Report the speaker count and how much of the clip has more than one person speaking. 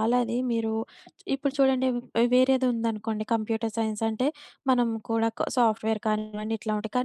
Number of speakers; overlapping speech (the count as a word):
one, no overlap